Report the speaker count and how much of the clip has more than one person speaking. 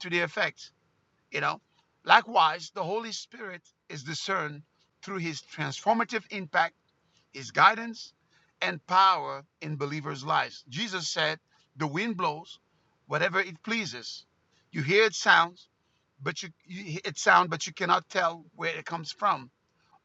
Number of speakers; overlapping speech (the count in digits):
1, no overlap